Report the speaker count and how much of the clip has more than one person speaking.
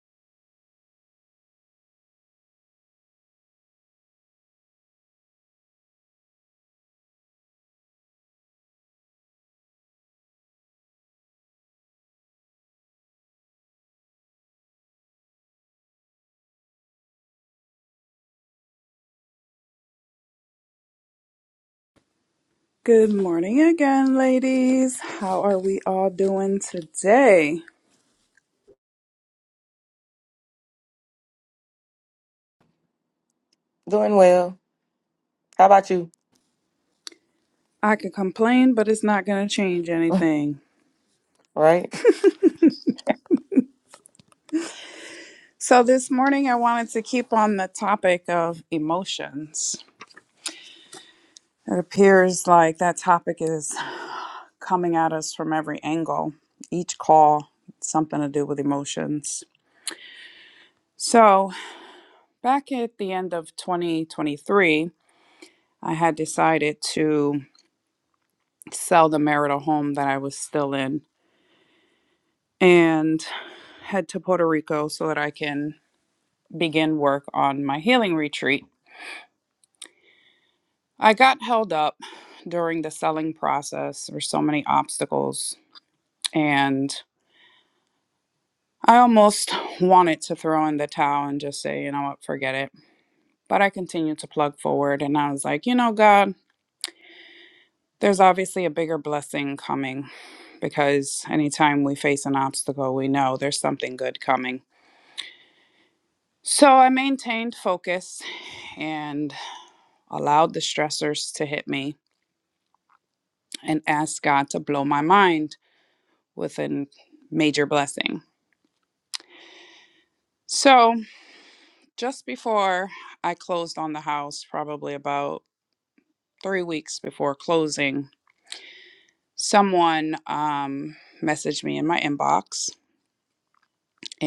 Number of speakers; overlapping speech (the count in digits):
2, no overlap